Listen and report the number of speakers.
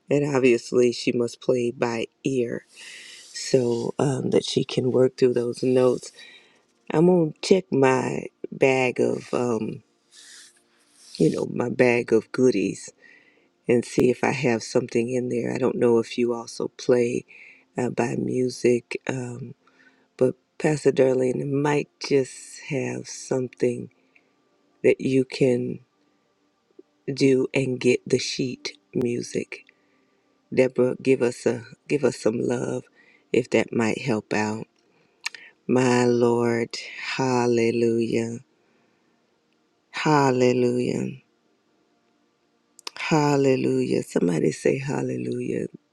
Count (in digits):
1